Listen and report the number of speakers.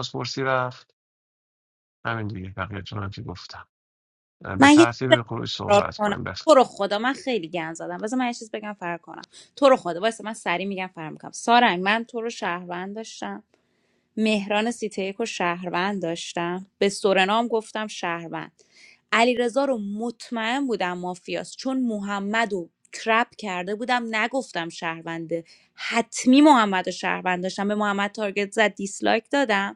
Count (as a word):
two